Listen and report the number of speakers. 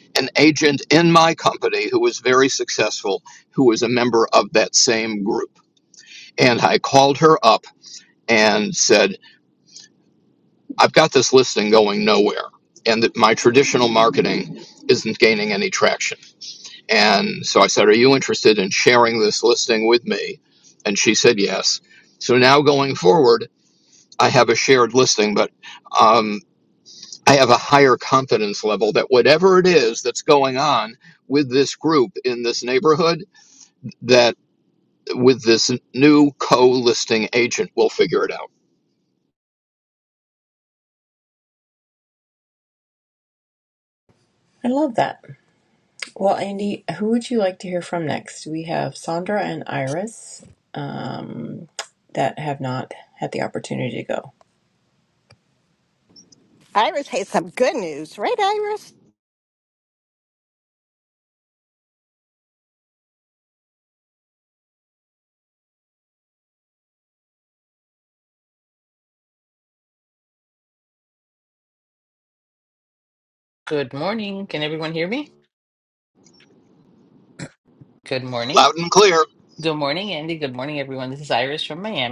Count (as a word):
four